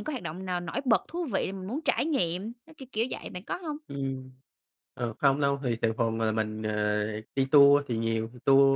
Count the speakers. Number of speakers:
two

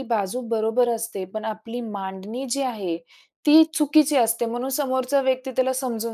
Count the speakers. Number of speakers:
one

